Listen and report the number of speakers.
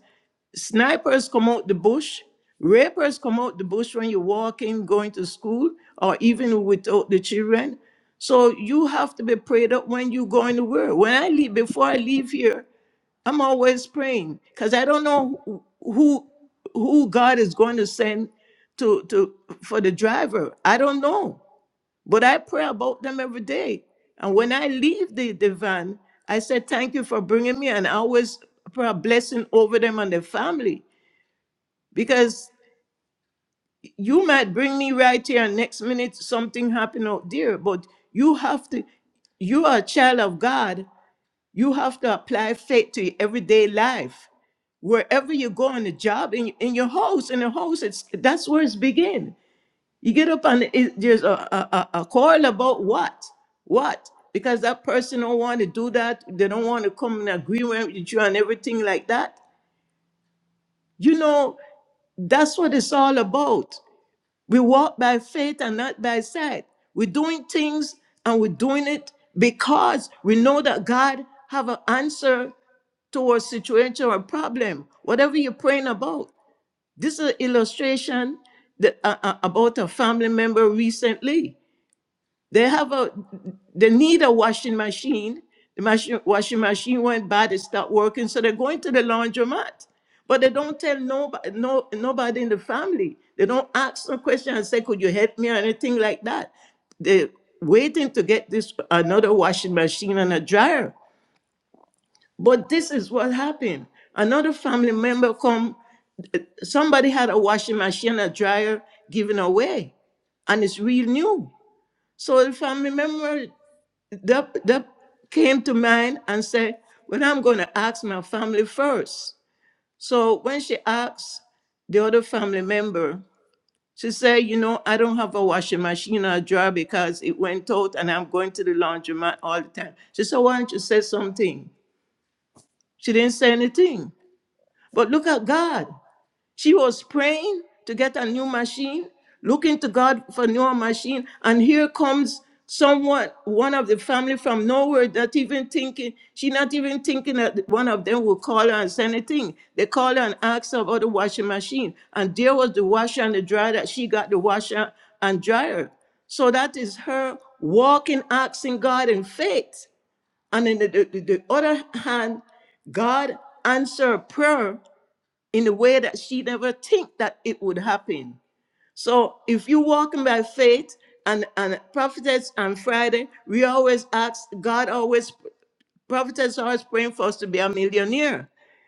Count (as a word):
one